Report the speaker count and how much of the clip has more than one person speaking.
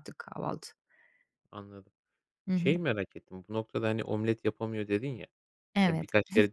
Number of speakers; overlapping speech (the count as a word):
two, about 6%